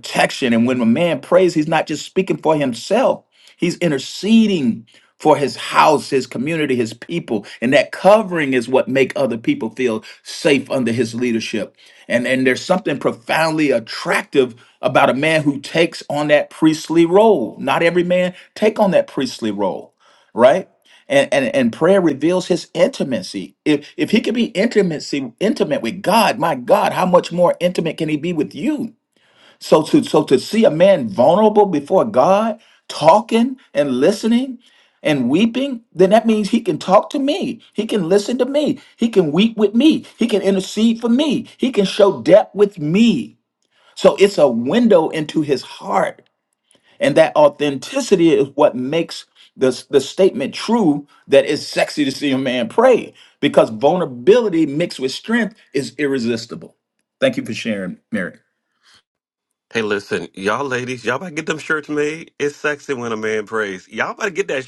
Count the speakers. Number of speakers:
two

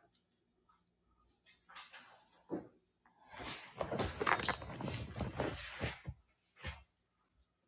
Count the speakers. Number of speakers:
zero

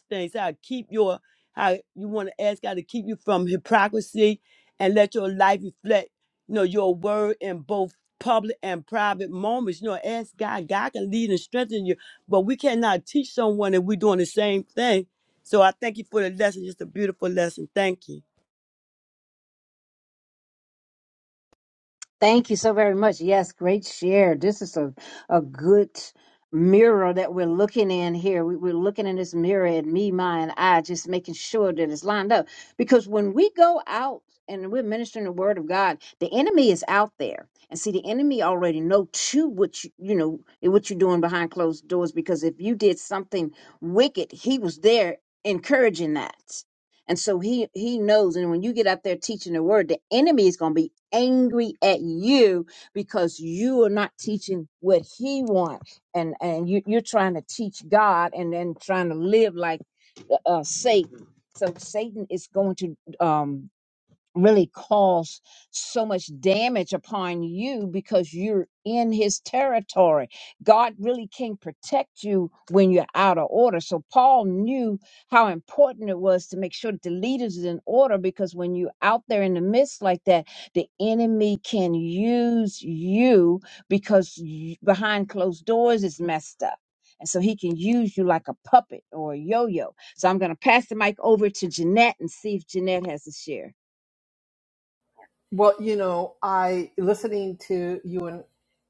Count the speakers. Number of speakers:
three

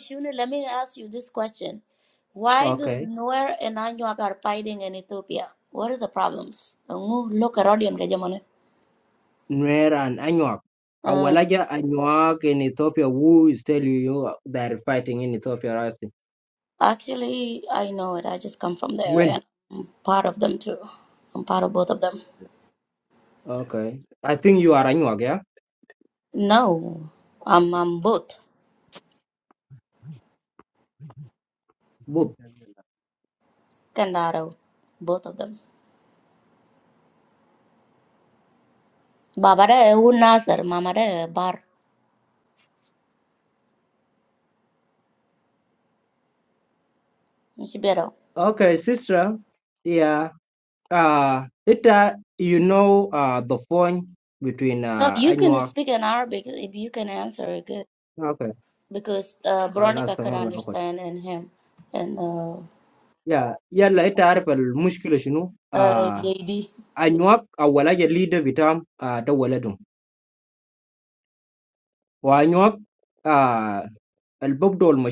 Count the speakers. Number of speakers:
two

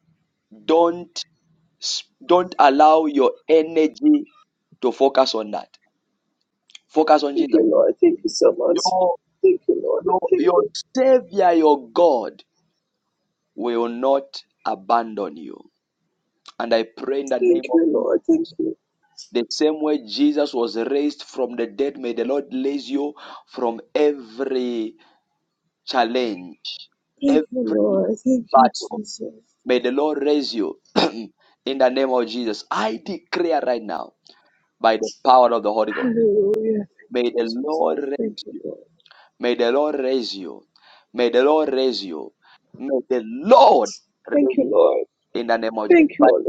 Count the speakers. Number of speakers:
two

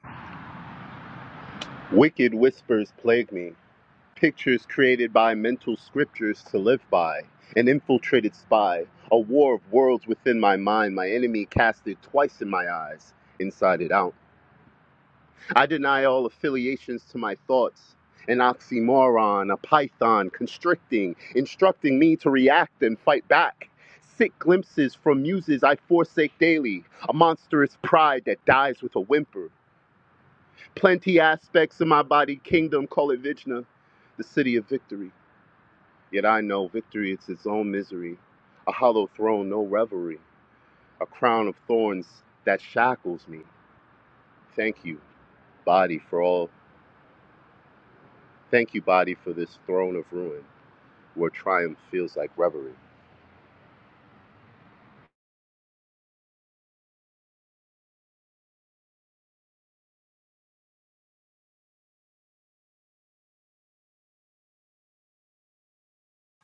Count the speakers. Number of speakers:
one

